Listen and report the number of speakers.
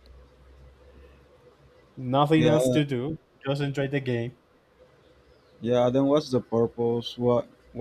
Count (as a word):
two